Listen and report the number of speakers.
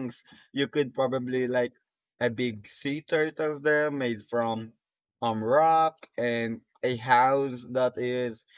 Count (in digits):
1